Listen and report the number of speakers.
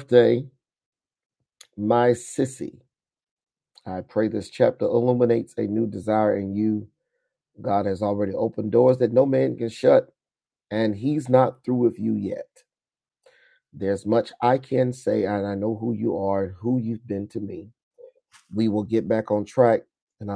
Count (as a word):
one